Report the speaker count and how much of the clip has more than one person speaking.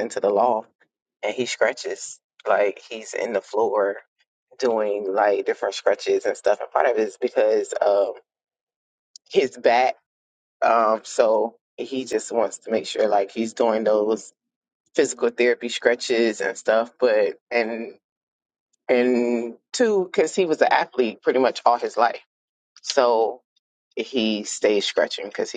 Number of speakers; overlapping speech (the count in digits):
1, no overlap